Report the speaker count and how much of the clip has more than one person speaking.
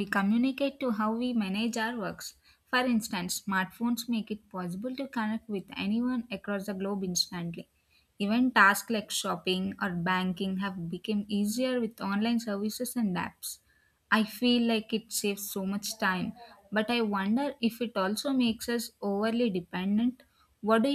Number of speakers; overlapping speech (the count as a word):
one, no overlap